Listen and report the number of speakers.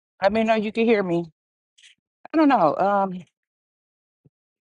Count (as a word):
one